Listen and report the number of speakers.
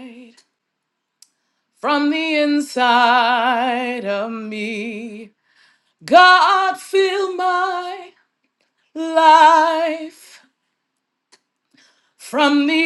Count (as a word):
one